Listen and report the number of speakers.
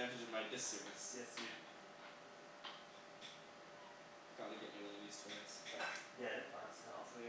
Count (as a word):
two